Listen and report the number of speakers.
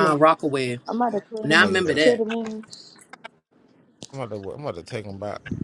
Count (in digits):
3